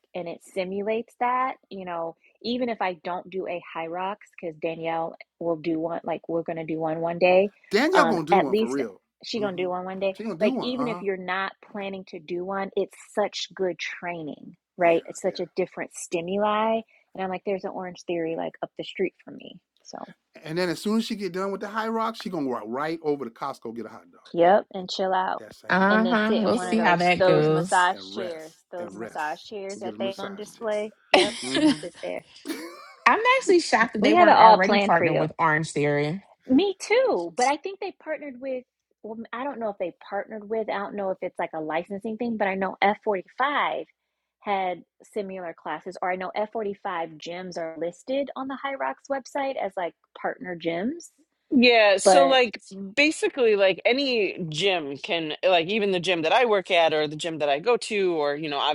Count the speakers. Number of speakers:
four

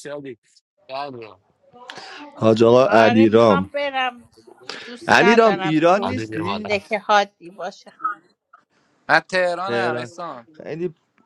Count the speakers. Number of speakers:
four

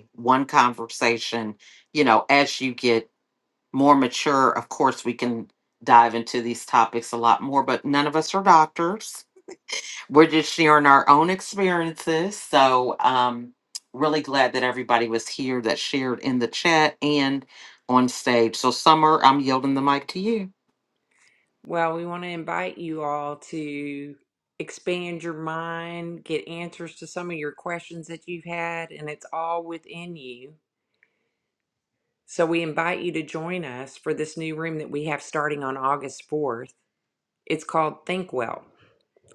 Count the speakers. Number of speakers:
two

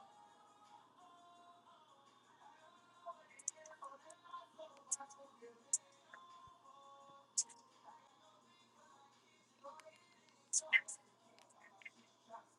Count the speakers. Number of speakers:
zero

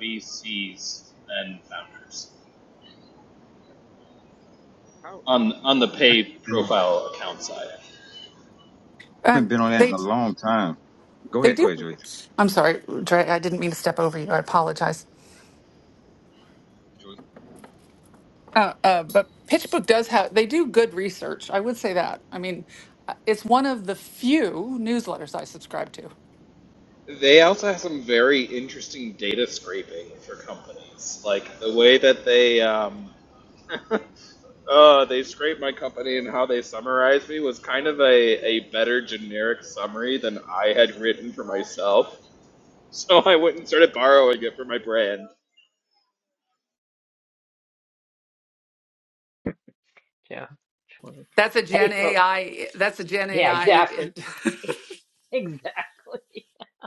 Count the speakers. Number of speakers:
four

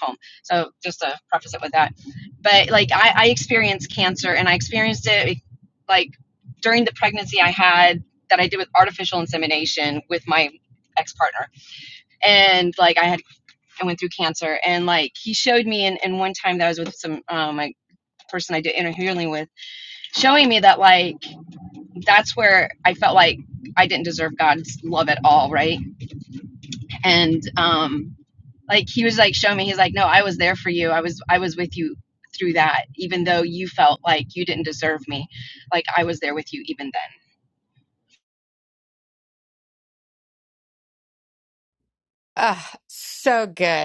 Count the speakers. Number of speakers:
two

